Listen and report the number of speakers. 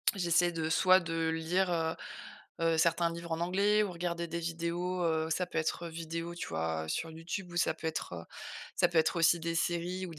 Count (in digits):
1